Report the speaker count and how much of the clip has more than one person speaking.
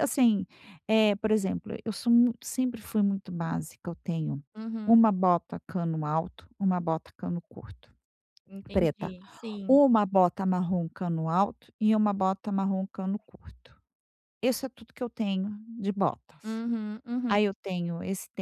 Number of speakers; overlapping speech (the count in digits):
2, about 4%